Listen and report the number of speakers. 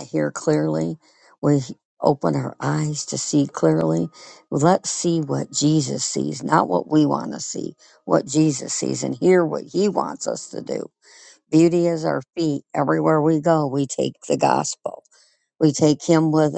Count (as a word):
one